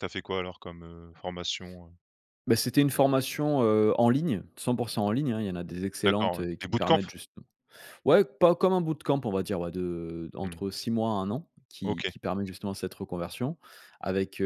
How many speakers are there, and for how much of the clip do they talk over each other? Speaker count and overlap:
2, about 10%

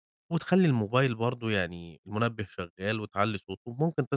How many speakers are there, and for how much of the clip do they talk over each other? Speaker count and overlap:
1, no overlap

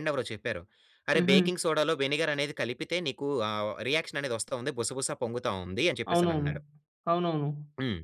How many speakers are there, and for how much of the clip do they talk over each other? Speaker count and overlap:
2, about 11%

